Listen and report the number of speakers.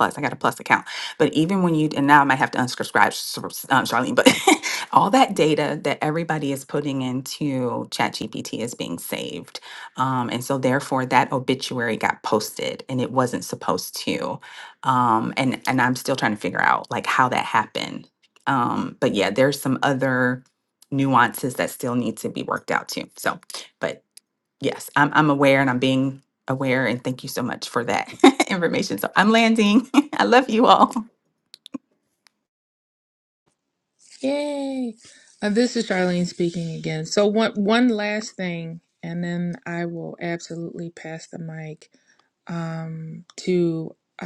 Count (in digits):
2